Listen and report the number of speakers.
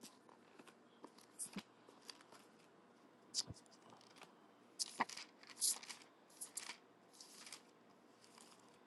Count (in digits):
0